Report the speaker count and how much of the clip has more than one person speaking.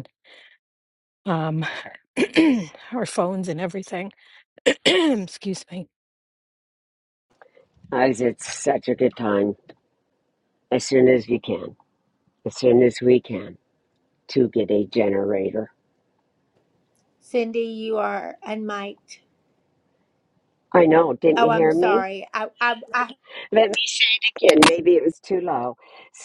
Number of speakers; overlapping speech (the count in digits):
3, about 3%